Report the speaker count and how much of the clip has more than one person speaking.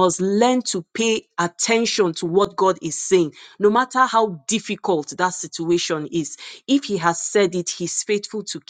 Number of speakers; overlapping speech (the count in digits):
1, no overlap